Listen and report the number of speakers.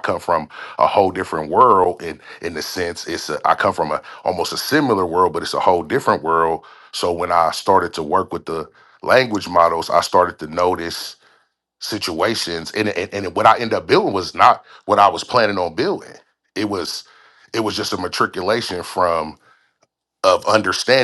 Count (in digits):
1